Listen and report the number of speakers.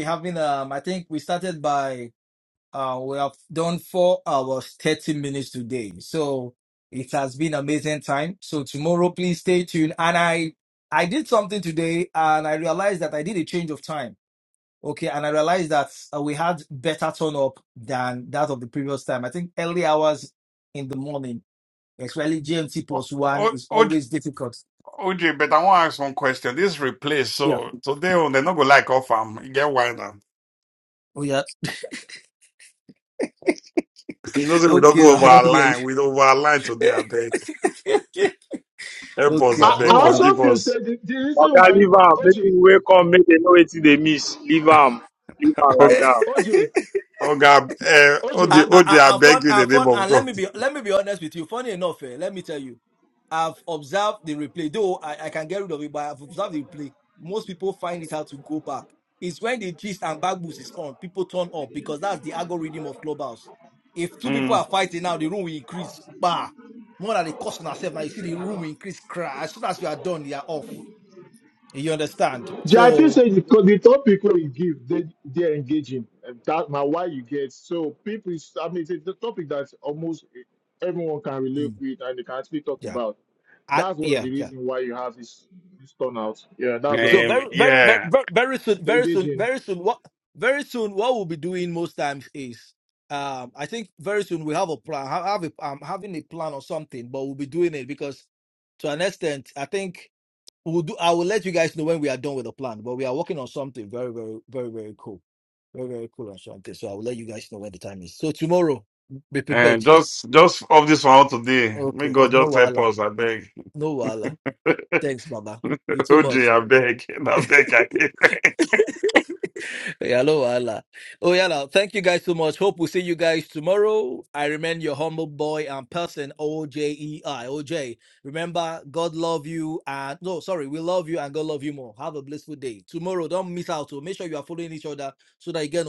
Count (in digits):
4